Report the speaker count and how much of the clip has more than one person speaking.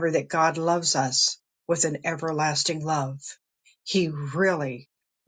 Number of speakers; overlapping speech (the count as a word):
one, no overlap